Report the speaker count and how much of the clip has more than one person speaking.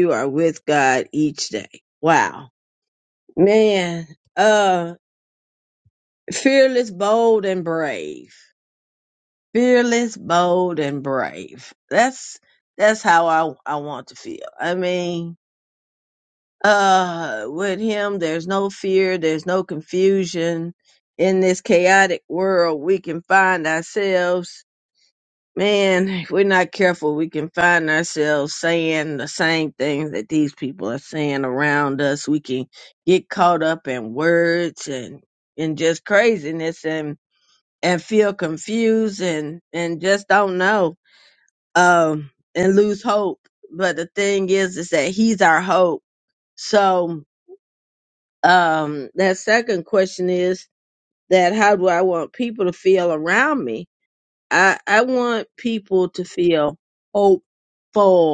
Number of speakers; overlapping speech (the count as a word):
one, no overlap